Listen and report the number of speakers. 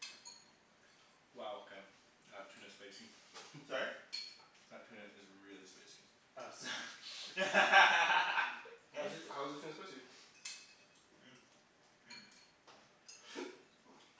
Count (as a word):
three